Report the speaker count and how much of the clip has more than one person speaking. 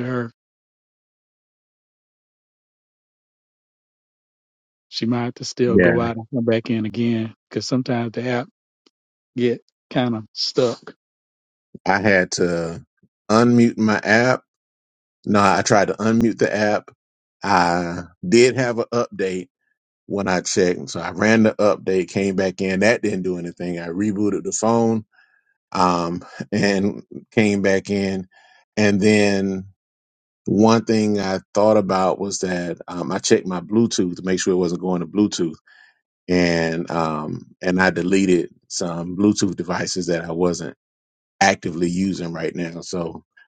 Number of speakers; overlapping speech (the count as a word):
two, about 1%